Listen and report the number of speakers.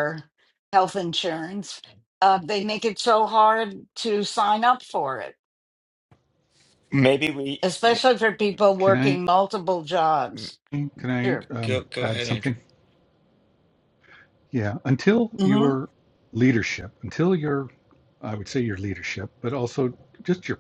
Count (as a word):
three